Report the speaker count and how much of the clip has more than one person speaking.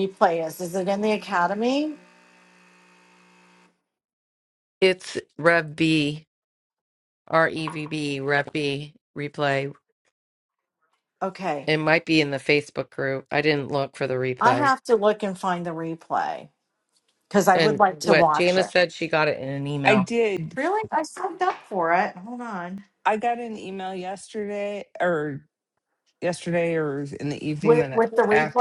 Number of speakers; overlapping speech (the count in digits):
3, about 9%